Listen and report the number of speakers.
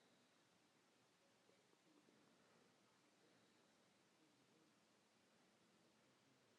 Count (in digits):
0